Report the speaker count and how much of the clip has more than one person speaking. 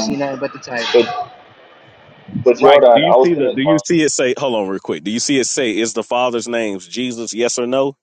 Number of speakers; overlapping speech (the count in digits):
3, about 19%